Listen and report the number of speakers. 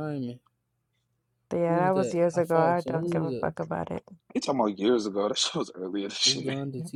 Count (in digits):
3